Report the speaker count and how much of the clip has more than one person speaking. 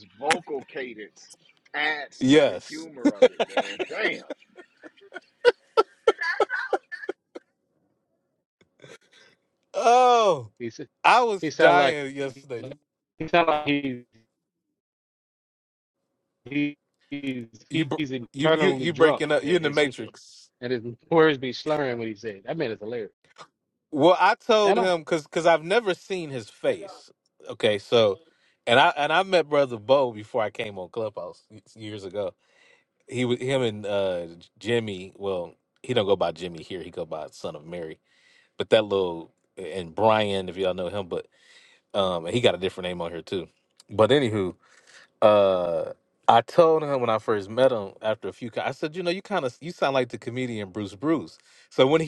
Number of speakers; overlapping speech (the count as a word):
three, about 6%